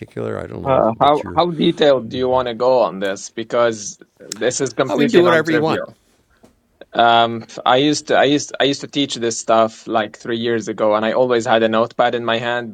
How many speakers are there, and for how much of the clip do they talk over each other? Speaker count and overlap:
2, about 13%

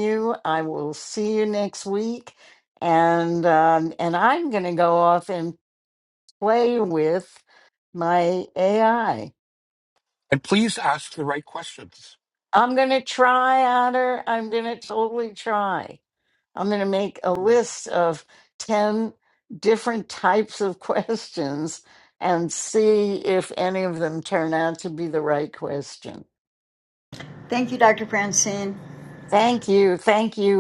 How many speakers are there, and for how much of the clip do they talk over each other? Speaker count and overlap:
3, no overlap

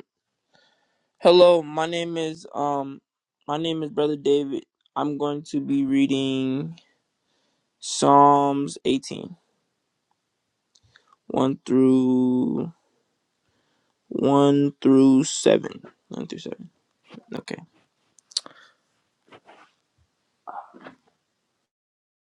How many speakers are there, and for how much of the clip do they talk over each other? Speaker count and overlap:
1, no overlap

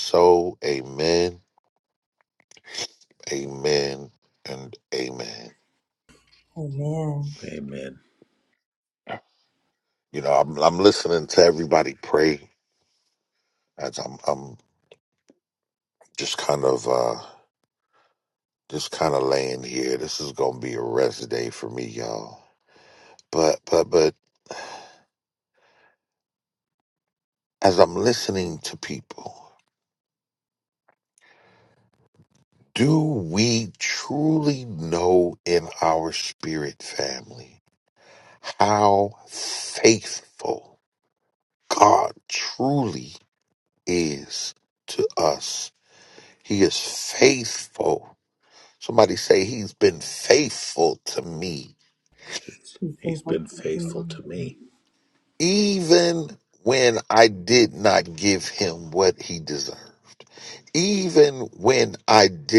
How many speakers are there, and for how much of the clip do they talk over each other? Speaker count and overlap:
3, about 2%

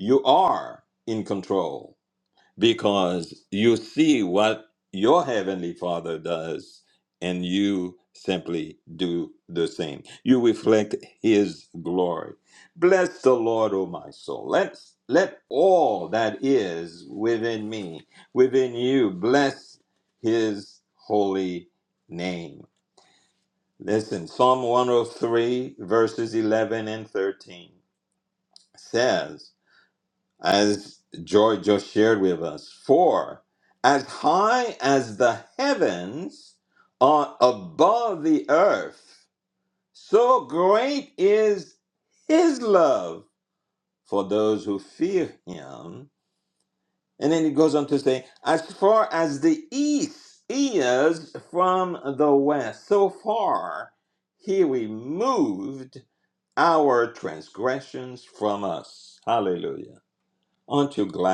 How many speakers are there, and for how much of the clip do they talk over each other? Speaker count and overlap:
1, no overlap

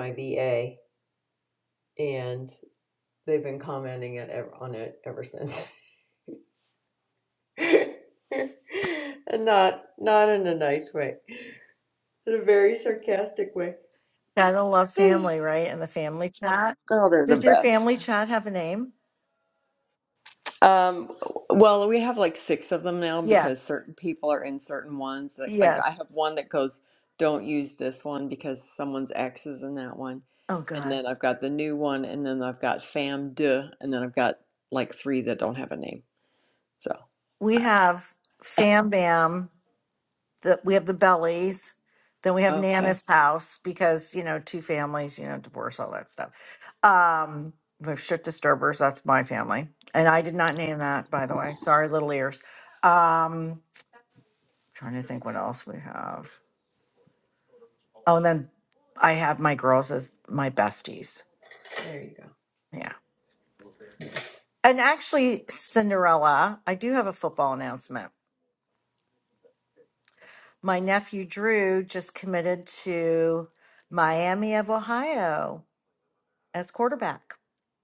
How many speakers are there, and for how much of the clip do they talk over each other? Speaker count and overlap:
2, about 3%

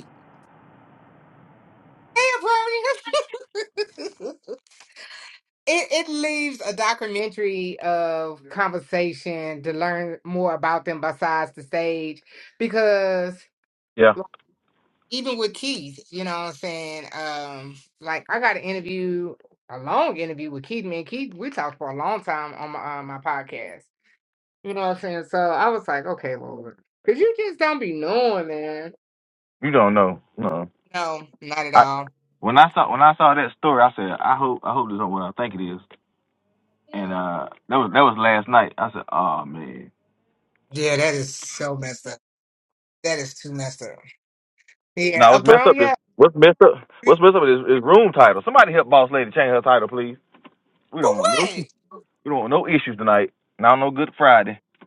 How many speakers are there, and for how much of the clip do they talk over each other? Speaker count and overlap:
2, about 3%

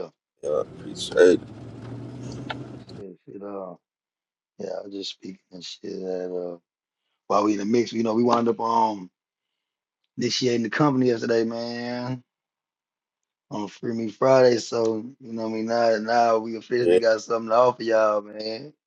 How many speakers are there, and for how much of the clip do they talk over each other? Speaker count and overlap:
2, about 1%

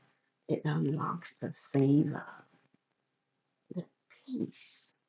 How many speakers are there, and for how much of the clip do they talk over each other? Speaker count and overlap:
1, no overlap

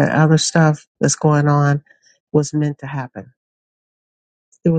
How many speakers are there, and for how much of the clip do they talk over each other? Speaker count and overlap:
1, no overlap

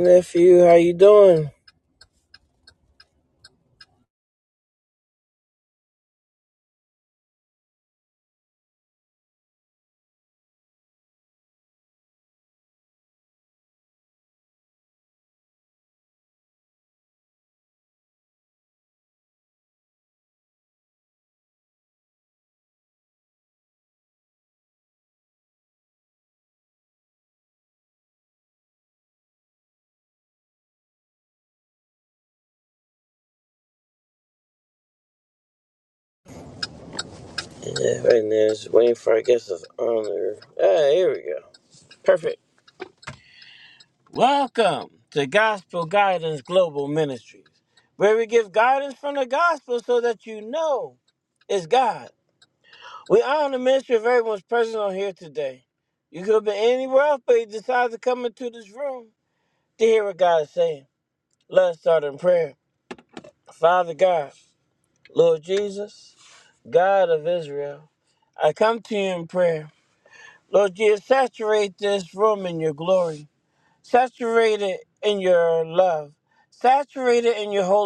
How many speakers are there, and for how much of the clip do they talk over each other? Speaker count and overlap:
1, no overlap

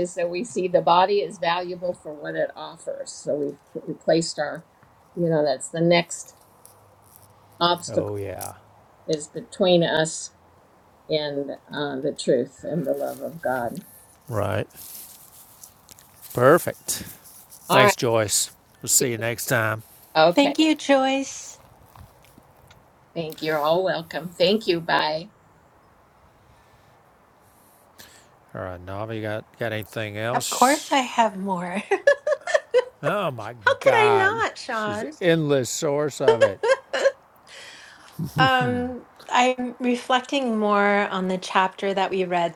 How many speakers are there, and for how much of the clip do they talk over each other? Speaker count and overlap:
3, about 5%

